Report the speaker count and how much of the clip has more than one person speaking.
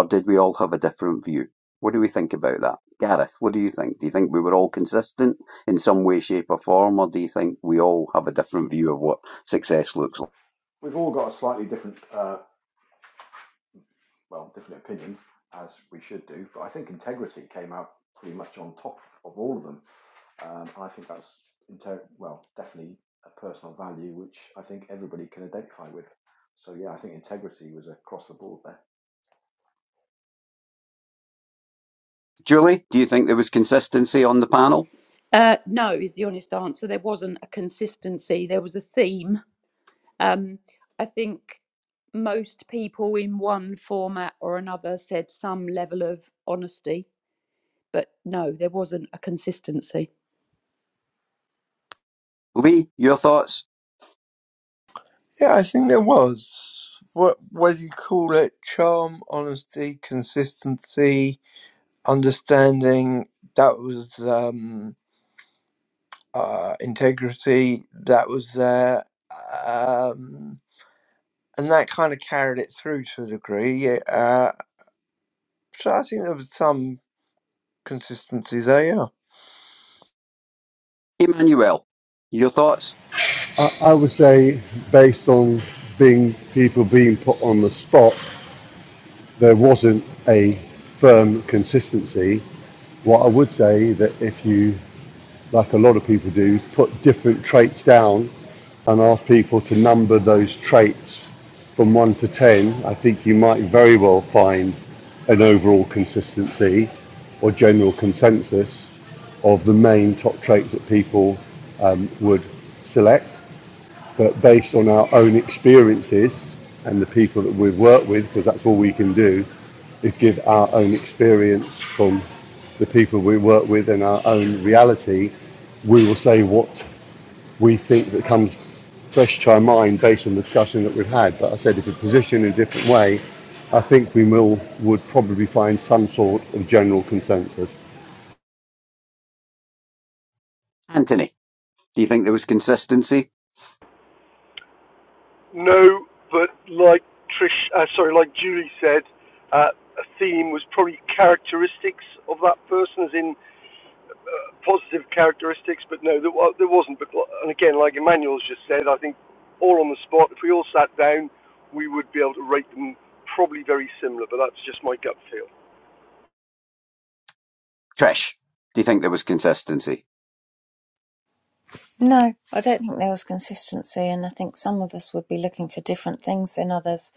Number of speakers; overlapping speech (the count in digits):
7, no overlap